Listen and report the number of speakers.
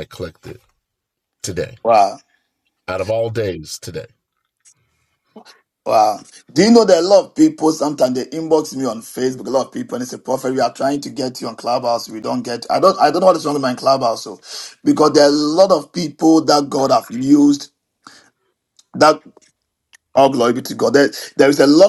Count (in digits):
2